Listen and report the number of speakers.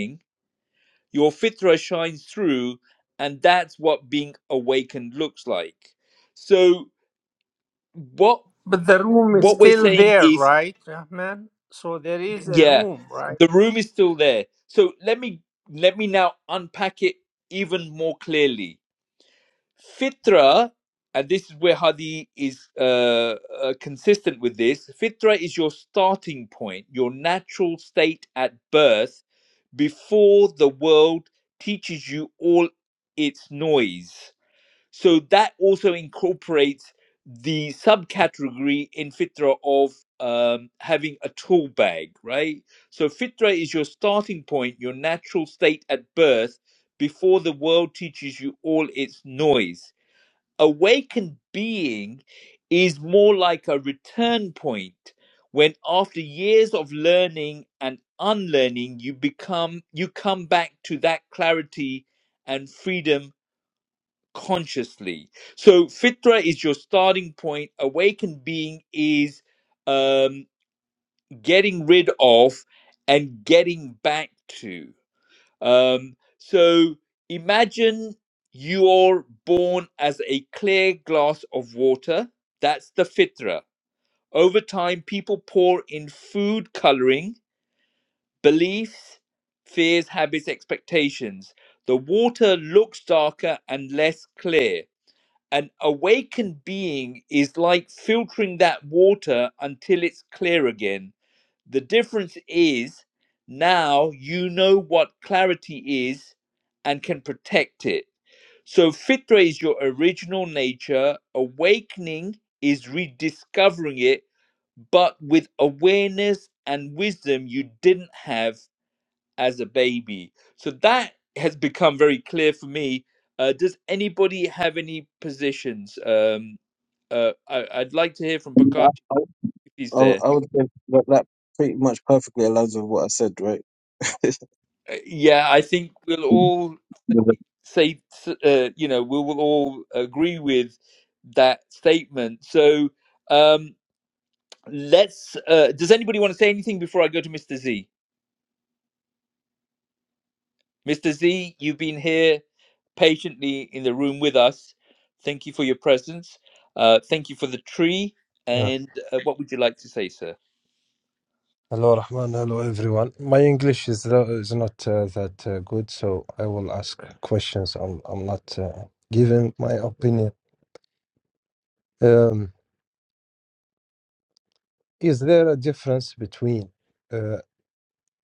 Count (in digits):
4